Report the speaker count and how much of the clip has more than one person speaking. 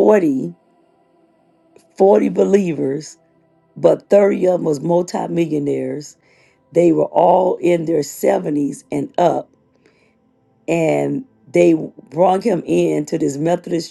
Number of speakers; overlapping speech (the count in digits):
1, no overlap